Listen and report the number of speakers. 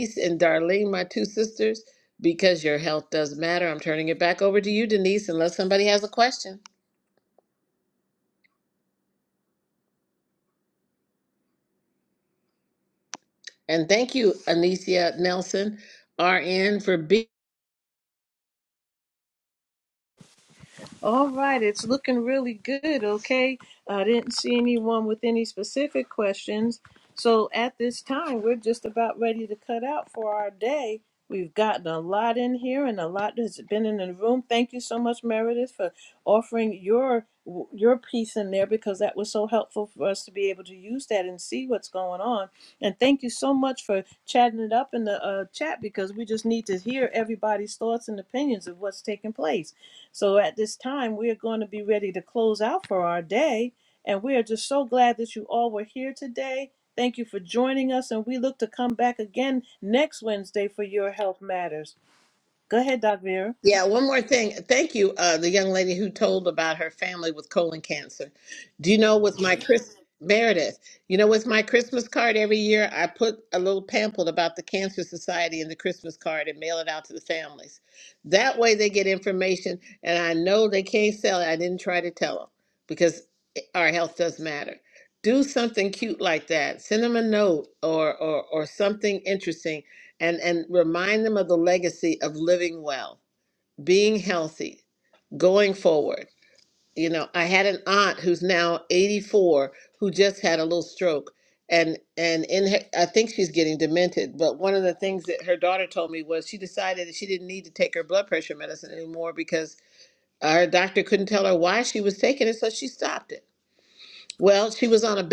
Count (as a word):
two